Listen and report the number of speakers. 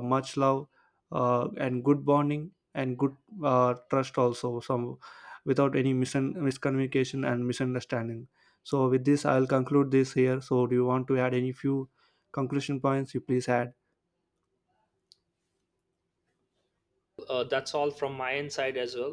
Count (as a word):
two